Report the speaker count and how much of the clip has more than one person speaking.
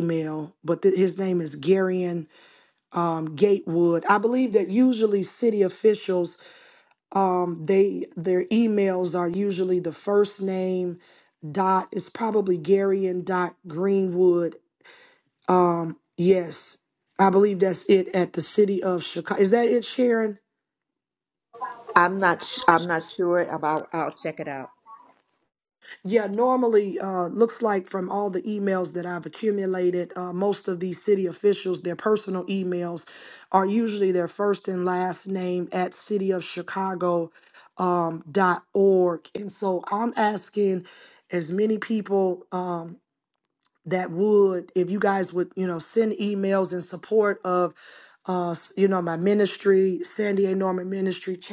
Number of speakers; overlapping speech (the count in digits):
2, no overlap